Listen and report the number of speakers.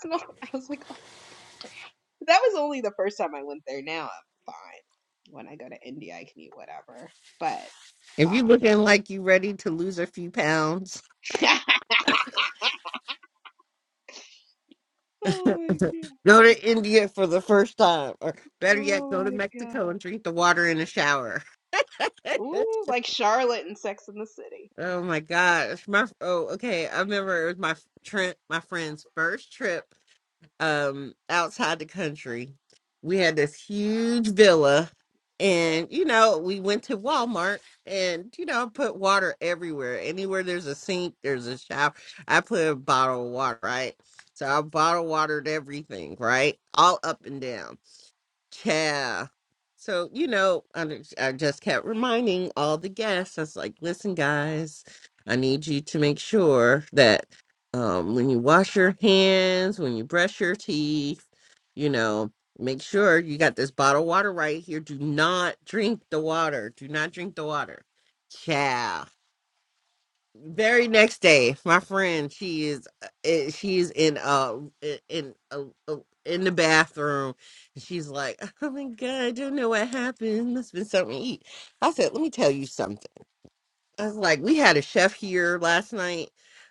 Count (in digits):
2